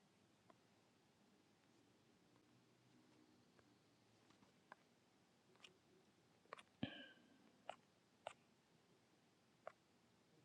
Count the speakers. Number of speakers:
zero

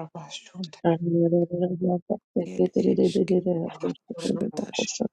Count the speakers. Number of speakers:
three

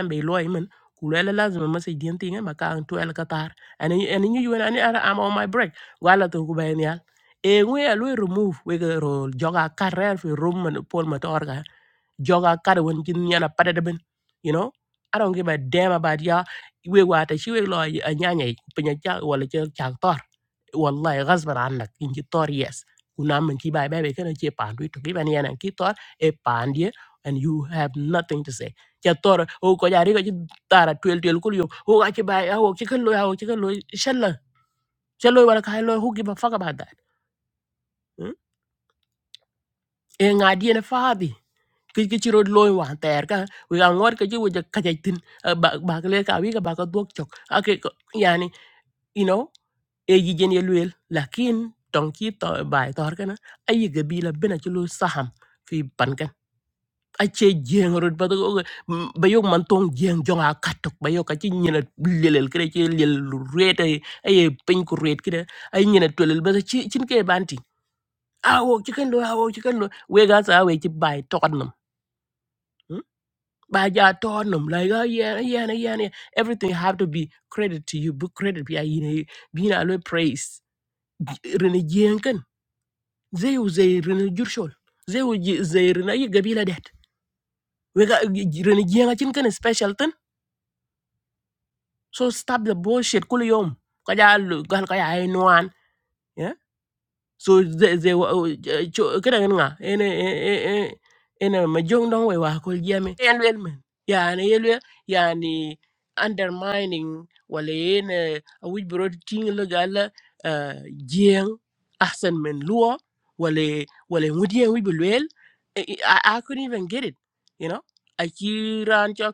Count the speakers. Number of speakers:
one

